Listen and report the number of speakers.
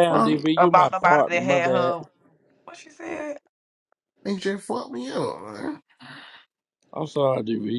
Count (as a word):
three